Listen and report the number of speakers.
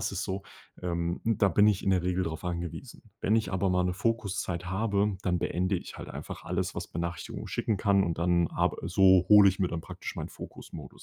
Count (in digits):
1